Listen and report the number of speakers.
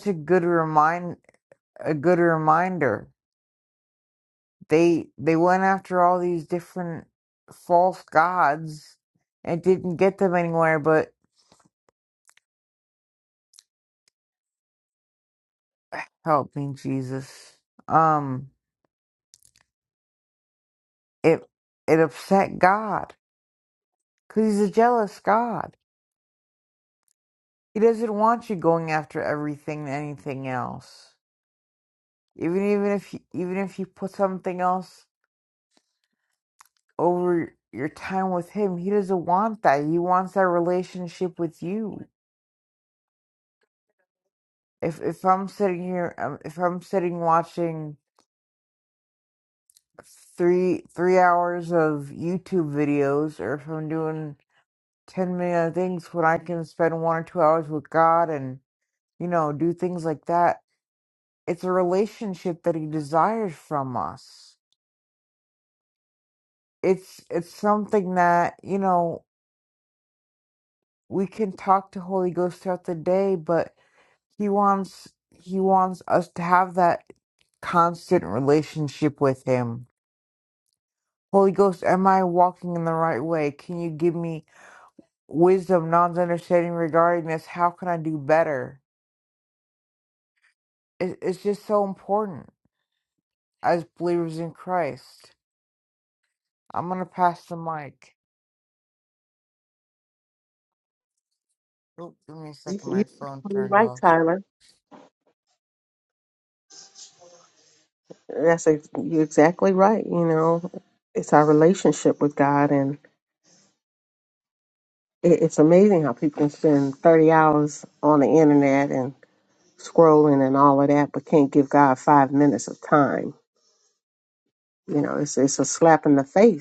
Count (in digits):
2